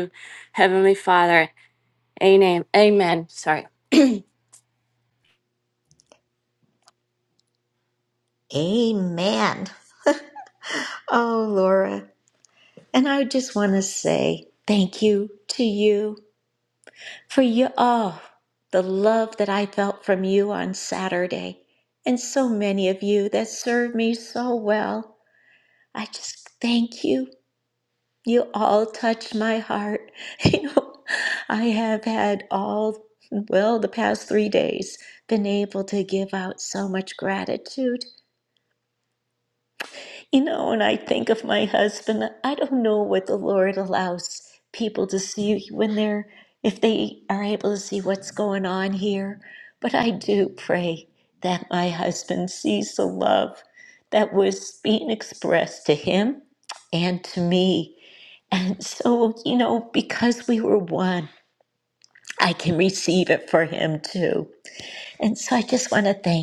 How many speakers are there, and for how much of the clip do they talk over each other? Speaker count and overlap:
2, no overlap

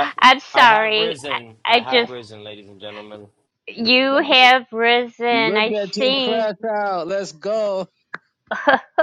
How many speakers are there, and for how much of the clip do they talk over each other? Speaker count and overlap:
3, about 30%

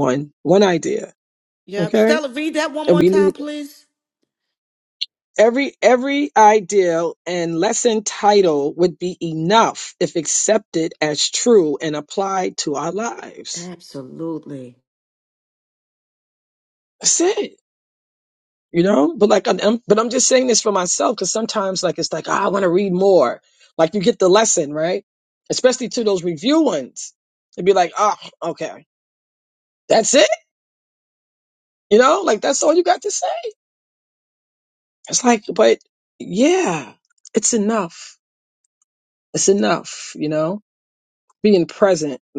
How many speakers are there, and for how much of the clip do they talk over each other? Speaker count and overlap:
2, about 2%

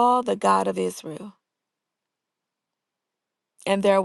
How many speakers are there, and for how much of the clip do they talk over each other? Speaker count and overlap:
1, no overlap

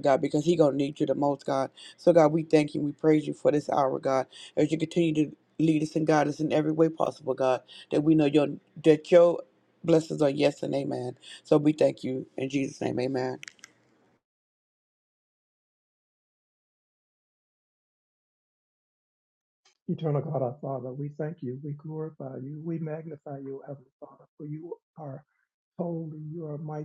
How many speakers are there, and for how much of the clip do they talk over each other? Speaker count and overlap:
2, no overlap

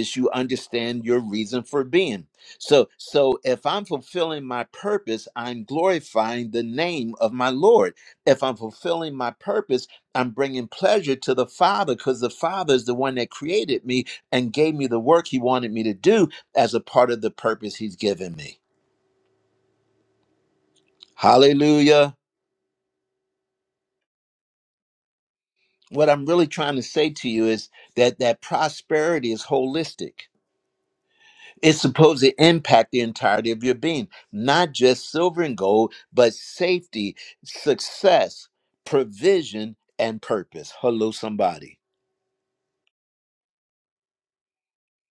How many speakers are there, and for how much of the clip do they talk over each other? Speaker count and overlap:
1, no overlap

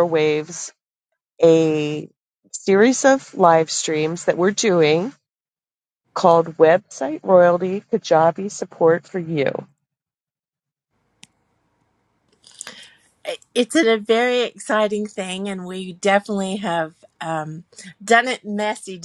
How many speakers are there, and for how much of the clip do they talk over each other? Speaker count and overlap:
2, no overlap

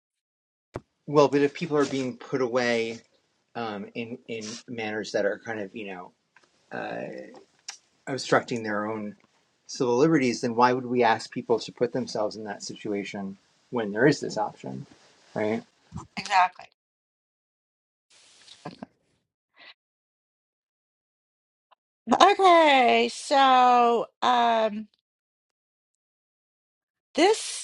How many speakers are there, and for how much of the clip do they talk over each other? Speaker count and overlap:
2, no overlap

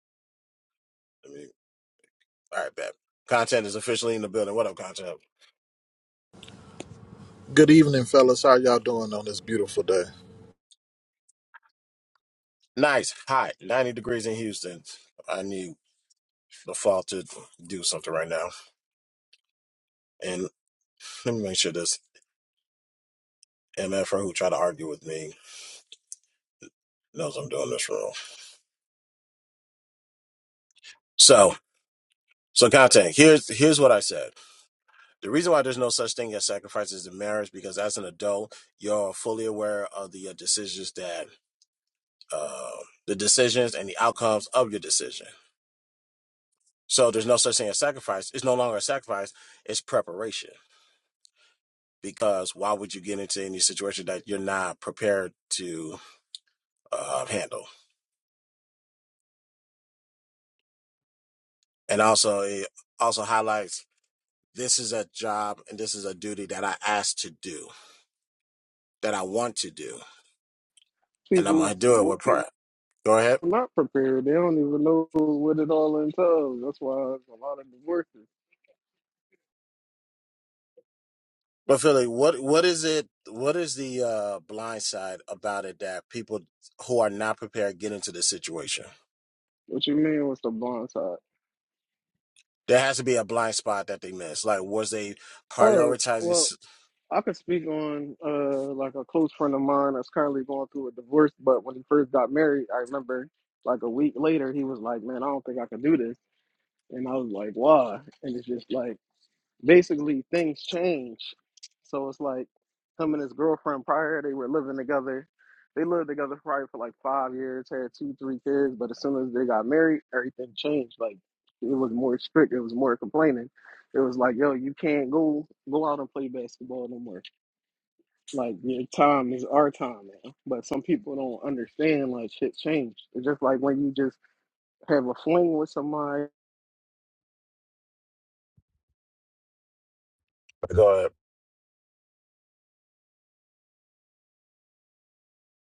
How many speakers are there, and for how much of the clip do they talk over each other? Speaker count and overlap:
3, about 1%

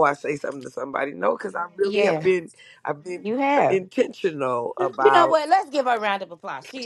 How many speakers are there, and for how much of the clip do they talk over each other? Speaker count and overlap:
2, about 14%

